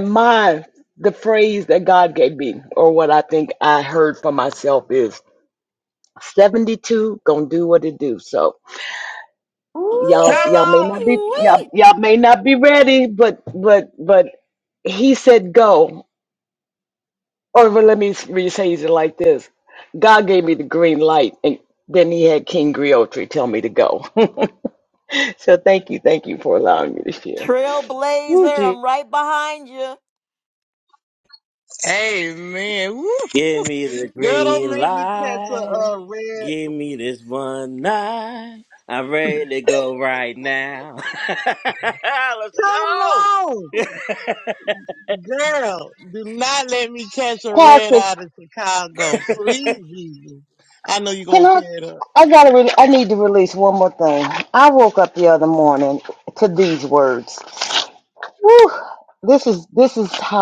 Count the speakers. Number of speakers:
4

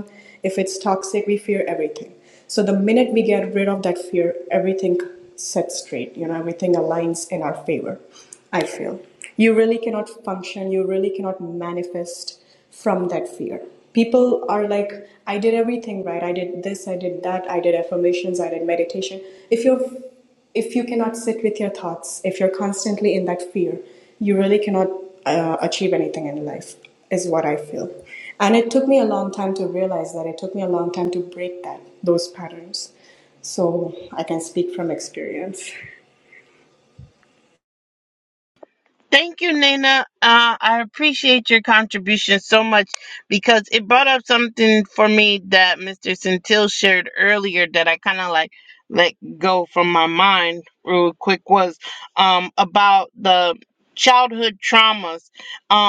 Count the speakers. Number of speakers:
2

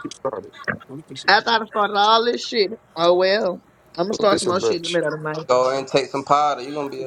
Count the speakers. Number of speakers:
3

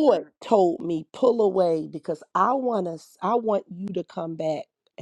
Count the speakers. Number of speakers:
1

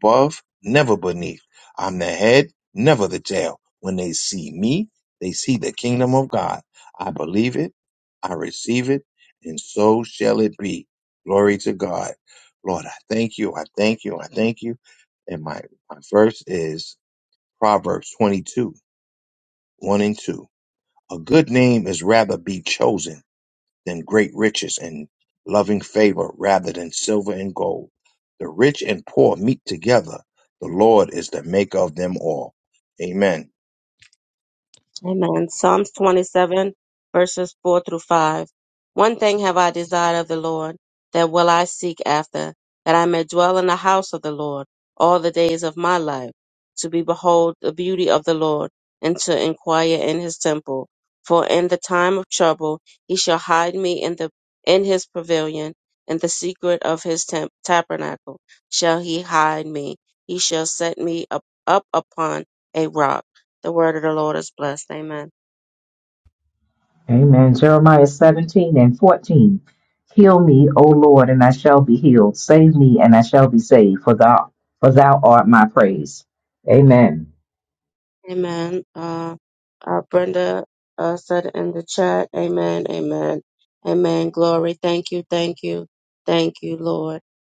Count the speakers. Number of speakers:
3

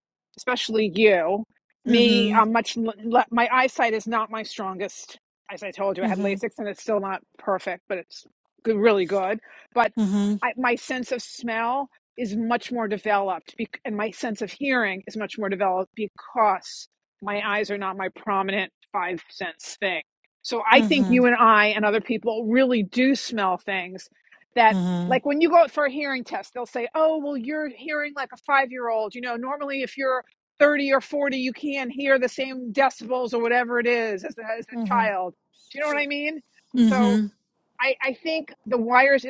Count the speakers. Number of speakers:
2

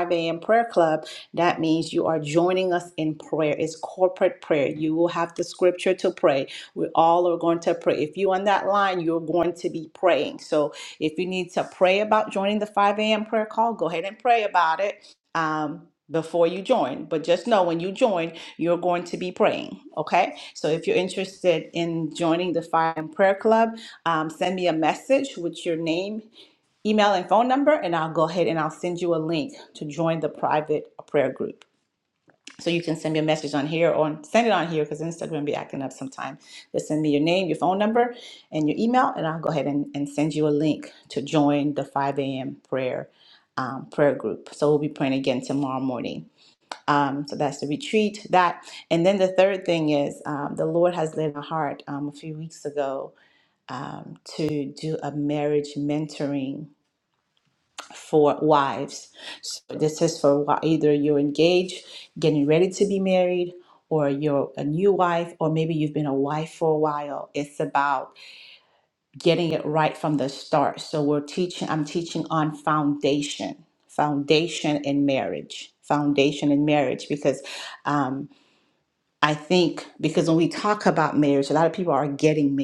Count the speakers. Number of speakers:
1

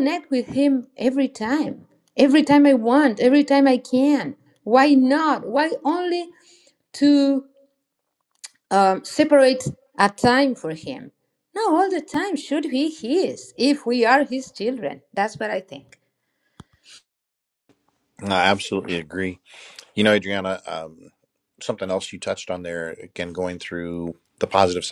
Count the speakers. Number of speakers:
2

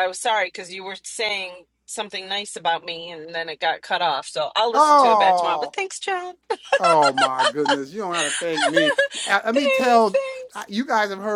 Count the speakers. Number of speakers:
2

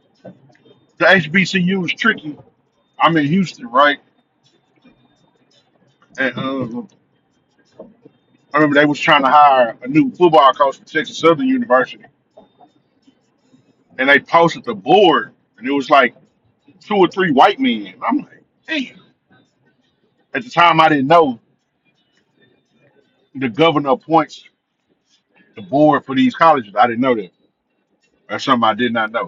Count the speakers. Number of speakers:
1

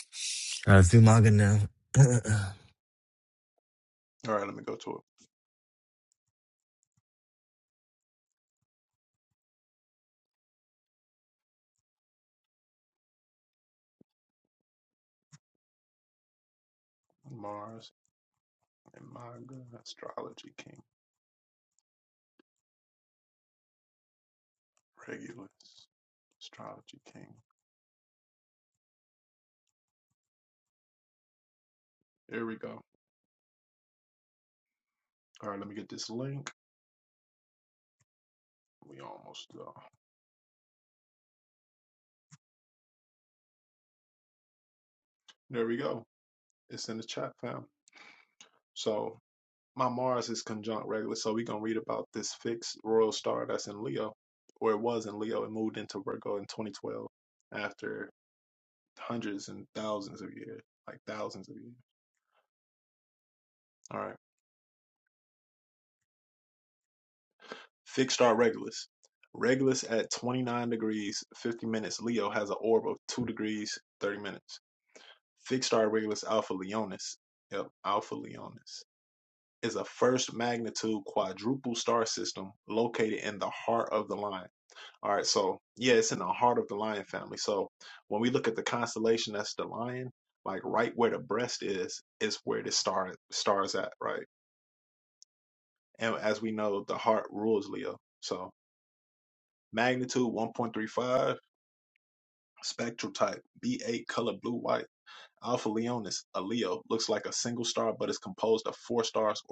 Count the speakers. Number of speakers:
2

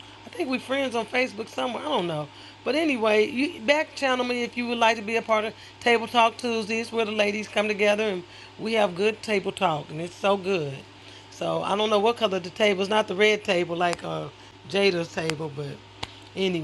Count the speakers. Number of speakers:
1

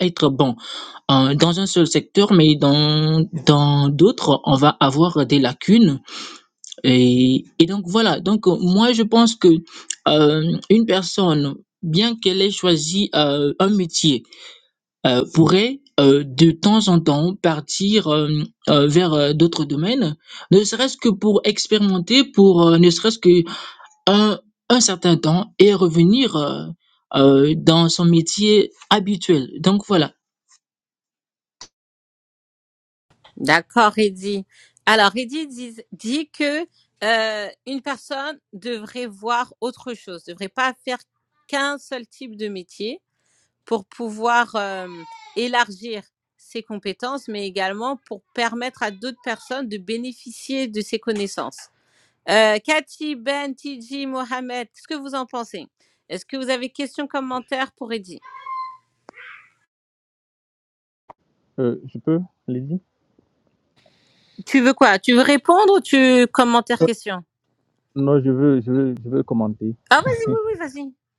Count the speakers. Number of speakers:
3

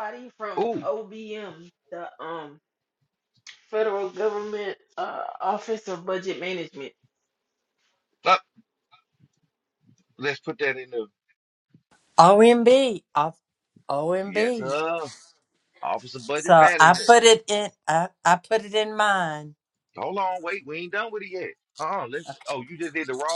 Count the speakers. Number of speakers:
3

